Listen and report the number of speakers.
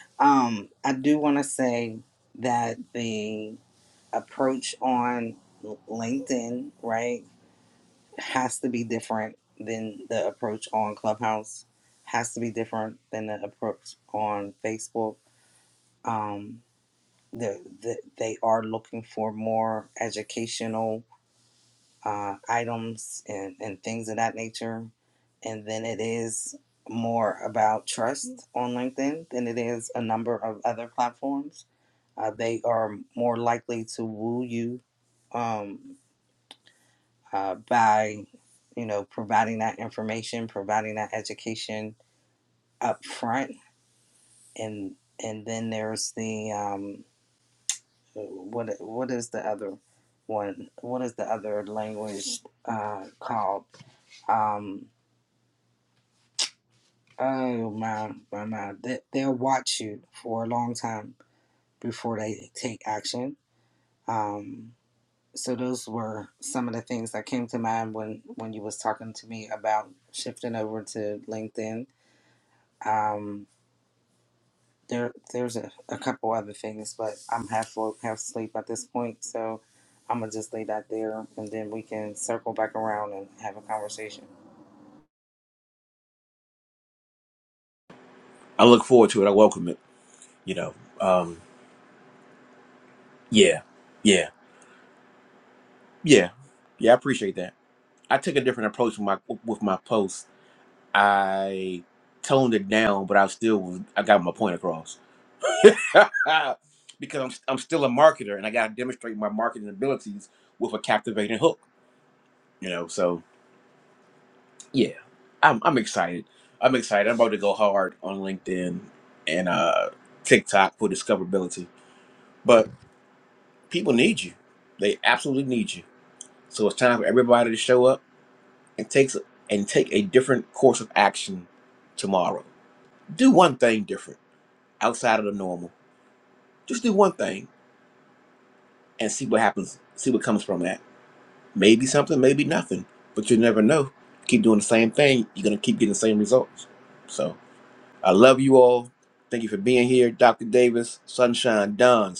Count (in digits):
2